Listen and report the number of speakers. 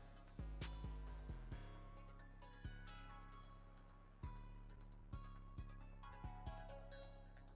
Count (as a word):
zero